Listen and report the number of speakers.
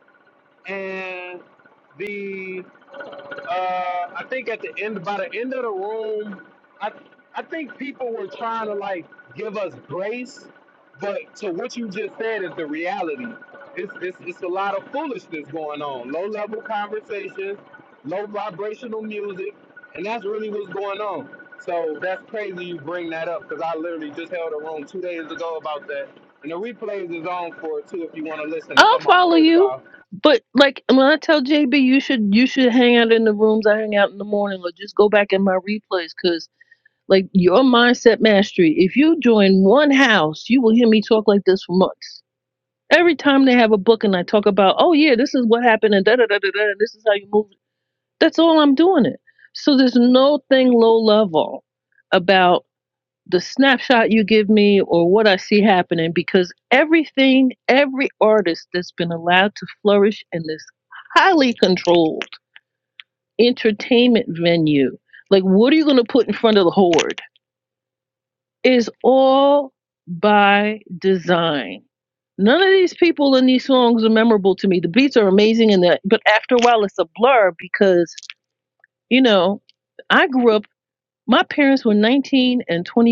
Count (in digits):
2